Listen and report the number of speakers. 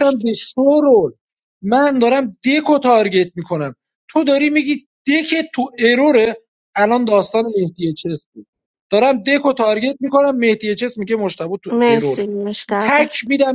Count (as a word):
two